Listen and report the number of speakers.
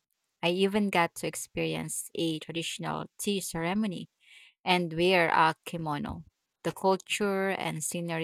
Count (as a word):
one